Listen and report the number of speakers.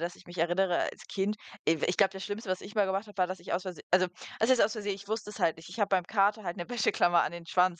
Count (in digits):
1